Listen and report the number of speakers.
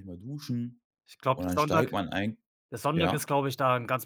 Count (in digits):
2